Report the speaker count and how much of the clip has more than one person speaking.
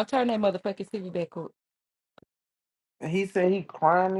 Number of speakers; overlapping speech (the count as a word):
two, no overlap